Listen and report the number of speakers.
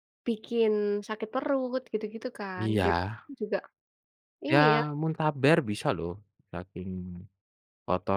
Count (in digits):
2